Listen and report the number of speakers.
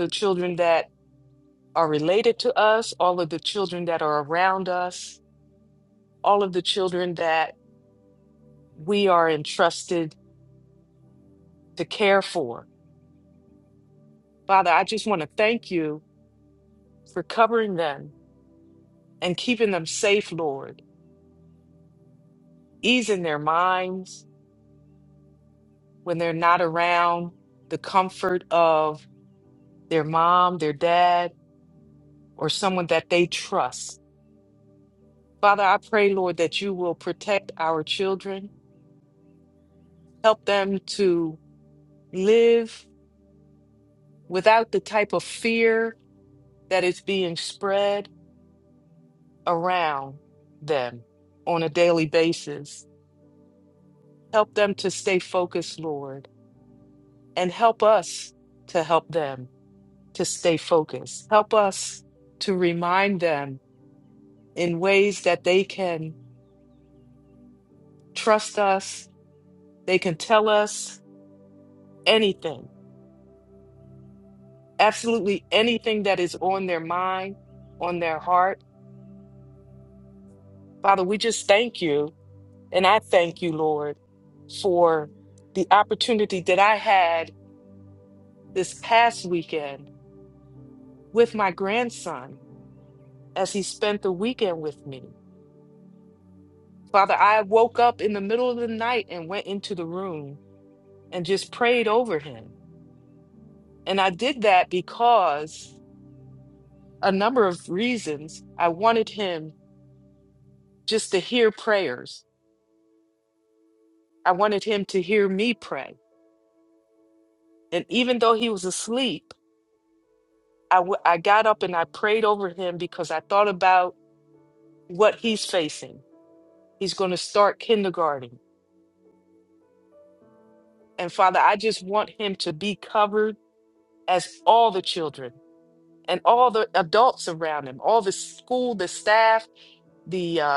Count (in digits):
1